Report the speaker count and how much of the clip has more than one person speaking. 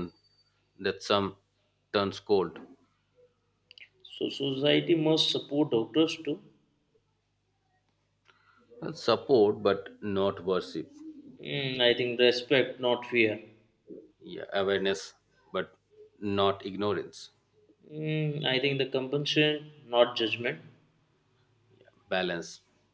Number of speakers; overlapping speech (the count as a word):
two, no overlap